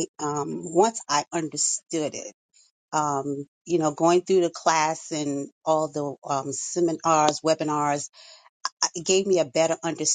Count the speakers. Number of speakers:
1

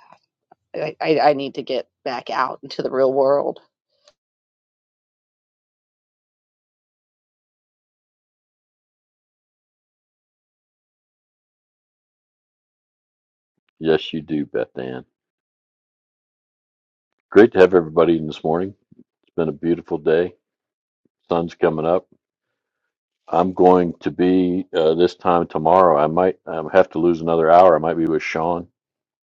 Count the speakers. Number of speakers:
2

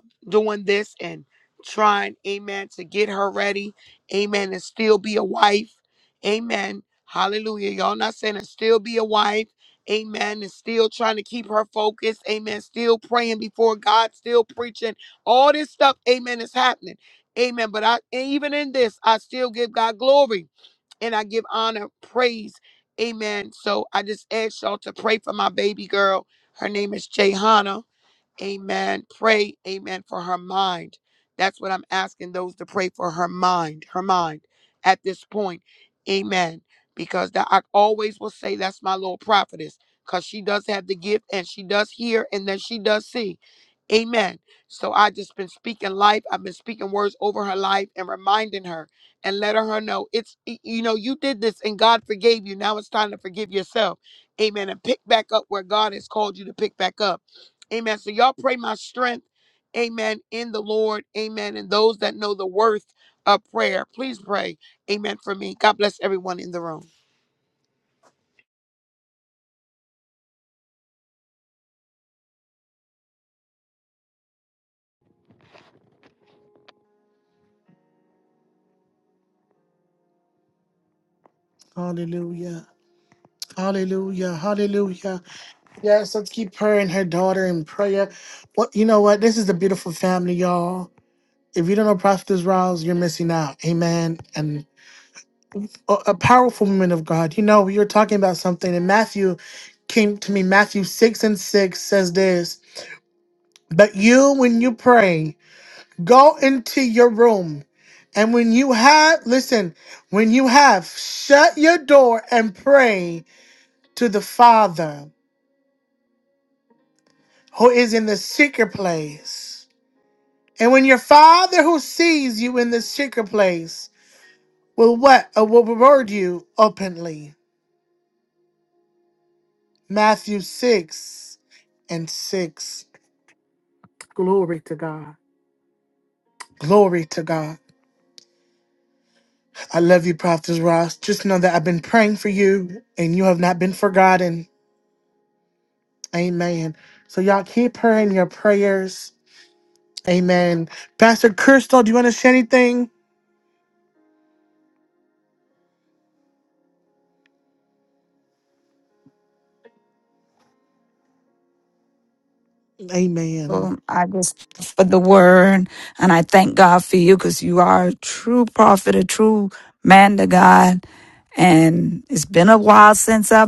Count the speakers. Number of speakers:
3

